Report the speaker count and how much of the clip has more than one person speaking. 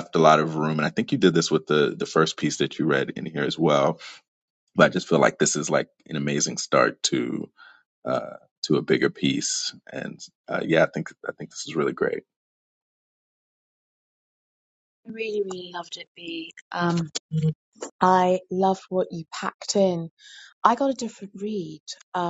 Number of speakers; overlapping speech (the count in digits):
2, no overlap